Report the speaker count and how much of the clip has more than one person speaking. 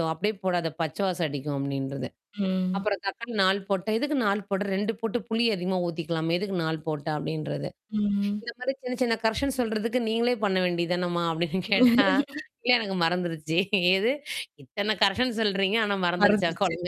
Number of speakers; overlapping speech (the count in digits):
2, about 4%